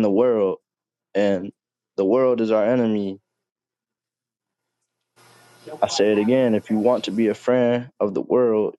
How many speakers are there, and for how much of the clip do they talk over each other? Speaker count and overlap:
one, no overlap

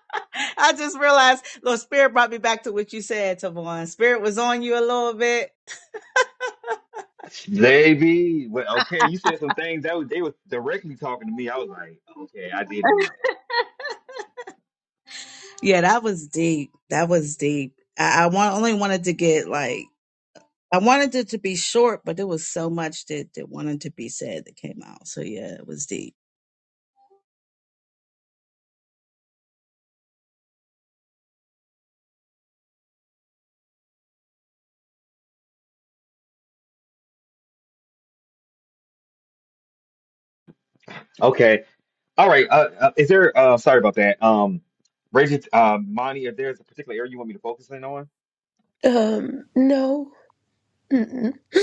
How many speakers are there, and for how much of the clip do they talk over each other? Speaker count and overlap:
three, no overlap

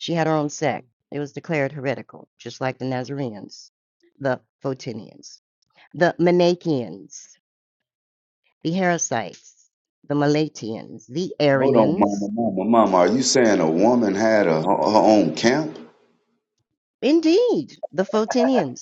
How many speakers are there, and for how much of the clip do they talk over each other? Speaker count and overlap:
two, about 3%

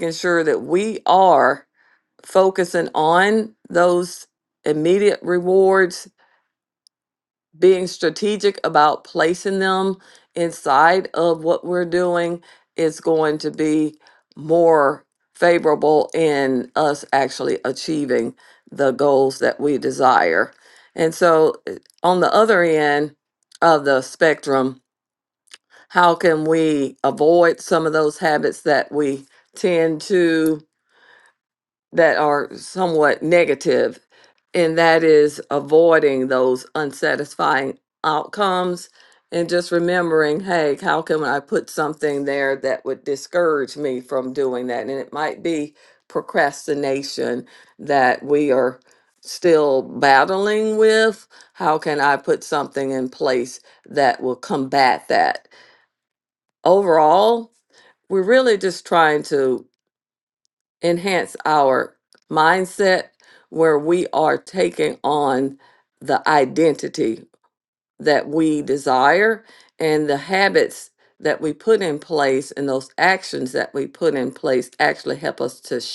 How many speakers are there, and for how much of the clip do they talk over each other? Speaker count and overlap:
one, no overlap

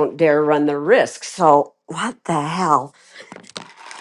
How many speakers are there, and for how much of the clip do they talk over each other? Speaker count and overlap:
one, no overlap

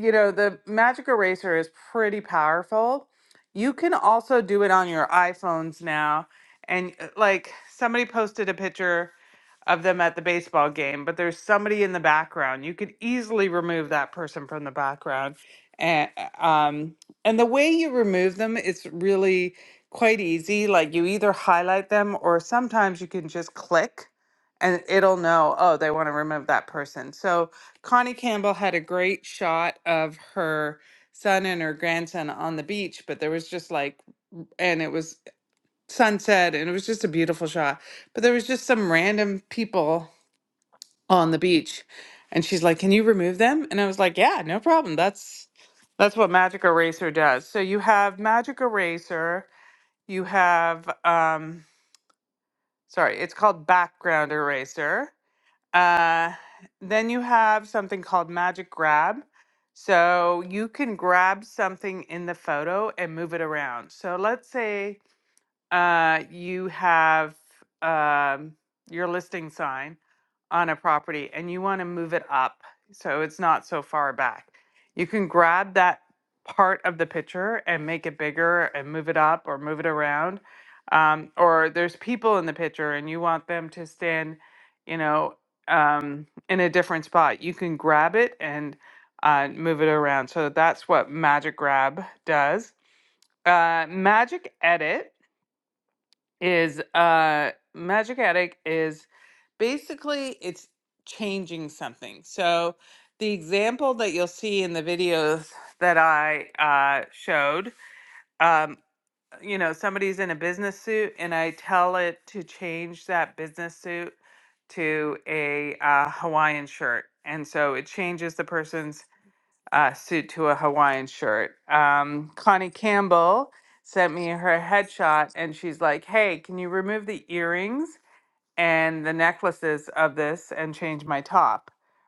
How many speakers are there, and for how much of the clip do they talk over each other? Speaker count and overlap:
one, no overlap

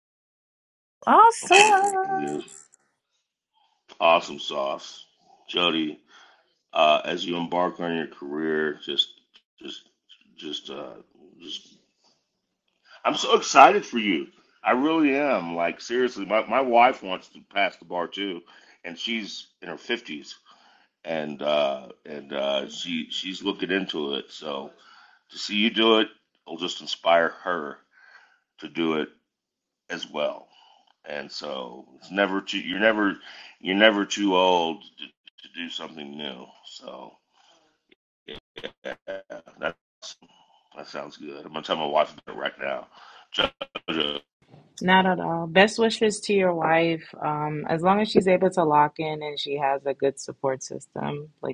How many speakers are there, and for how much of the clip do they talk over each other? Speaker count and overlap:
three, about 1%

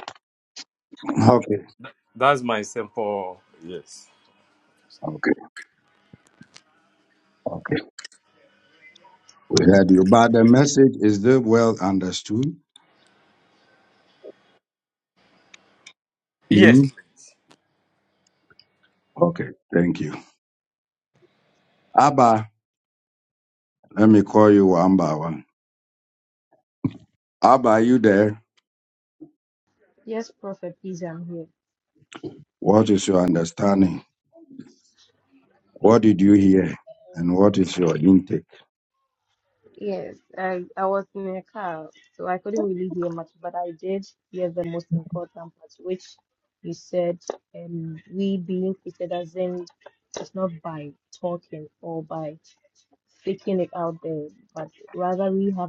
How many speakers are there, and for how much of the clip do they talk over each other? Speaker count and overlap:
three, about 1%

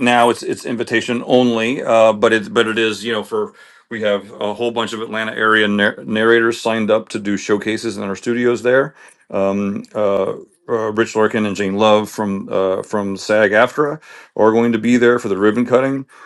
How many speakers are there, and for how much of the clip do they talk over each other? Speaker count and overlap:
one, no overlap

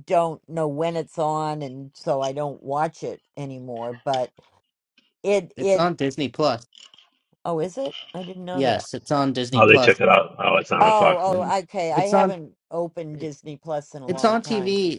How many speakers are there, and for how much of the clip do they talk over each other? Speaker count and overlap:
three, about 19%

